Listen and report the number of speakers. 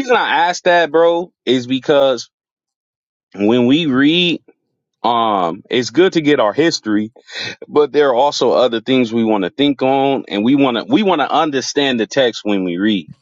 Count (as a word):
one